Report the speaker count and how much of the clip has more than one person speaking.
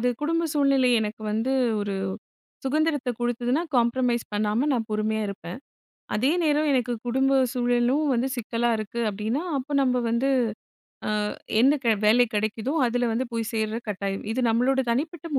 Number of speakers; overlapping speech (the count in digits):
1, no overlap